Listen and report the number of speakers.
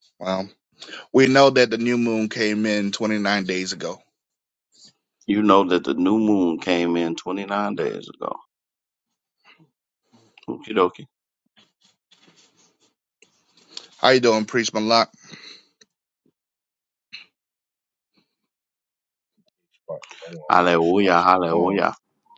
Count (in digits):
3